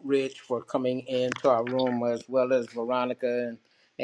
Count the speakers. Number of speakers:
1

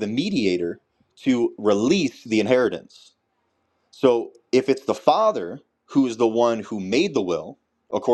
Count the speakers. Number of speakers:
1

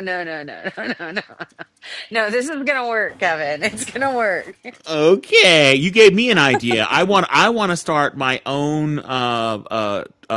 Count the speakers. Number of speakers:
2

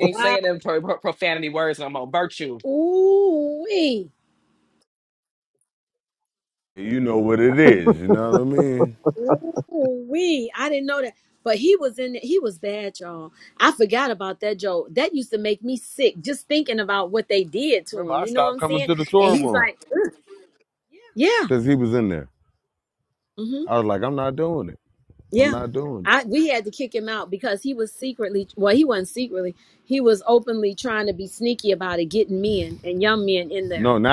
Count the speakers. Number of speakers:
3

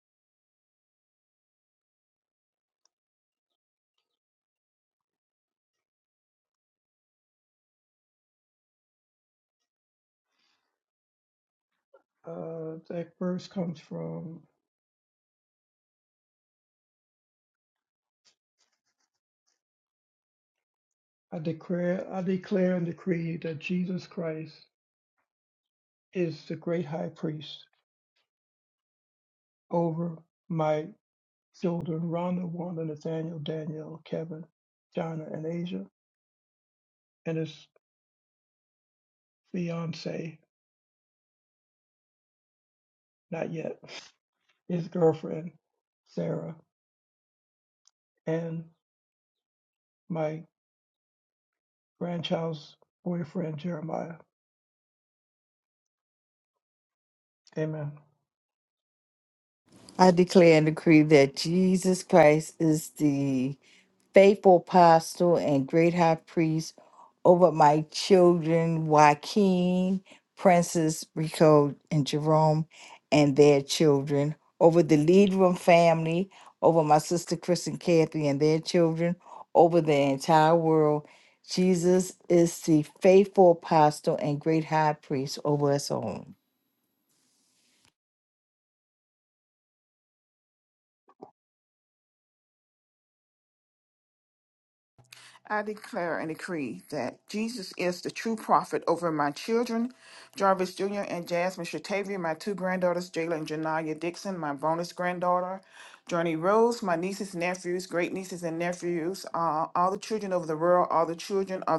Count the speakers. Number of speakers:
3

